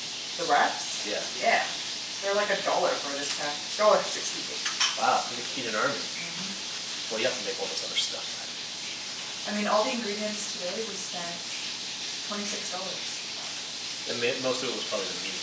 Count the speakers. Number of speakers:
two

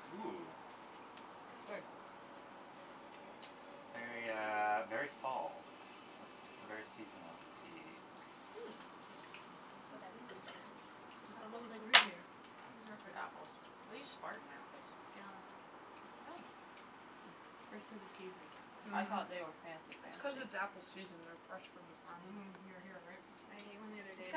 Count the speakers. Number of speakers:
four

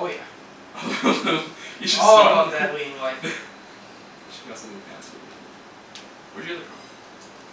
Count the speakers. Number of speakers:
two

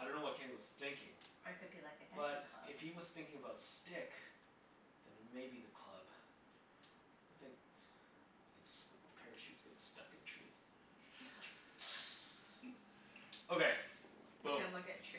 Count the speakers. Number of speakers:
two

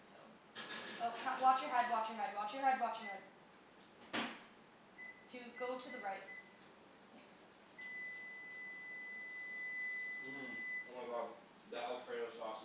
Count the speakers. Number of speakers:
two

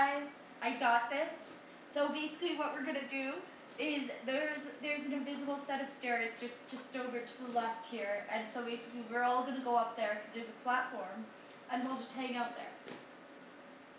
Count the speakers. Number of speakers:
one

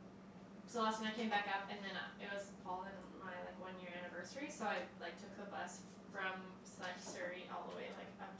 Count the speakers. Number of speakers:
one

